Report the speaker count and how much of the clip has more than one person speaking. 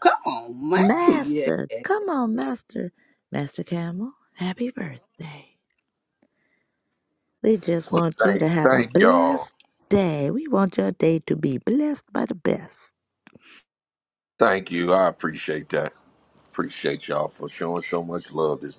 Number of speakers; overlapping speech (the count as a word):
three, about 12%